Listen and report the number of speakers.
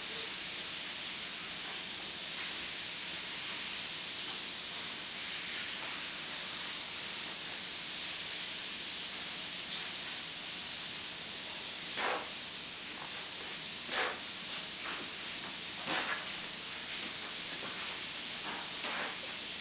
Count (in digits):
0